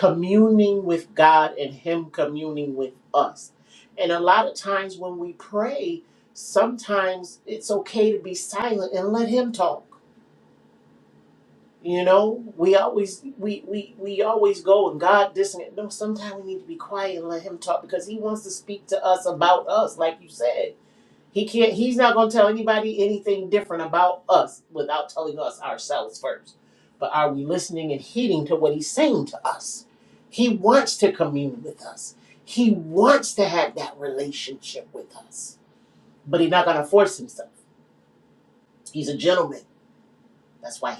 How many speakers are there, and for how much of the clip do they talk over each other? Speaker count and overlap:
1, no overlap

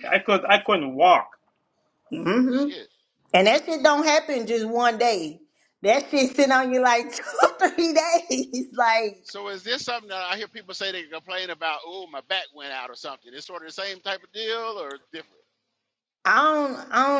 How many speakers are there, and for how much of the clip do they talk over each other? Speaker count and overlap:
3, no overlap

